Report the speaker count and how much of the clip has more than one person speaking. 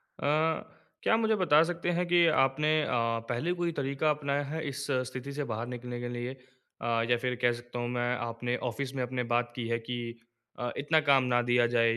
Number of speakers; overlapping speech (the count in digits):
1, no overlap